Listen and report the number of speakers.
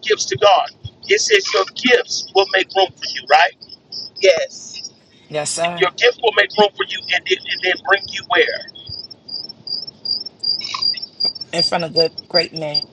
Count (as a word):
two